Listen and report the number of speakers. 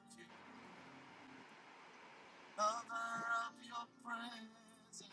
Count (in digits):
0